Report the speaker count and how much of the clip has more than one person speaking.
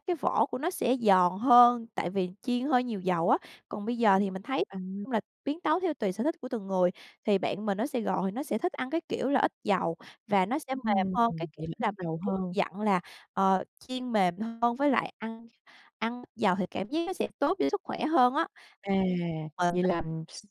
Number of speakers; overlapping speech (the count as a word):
two, about 4%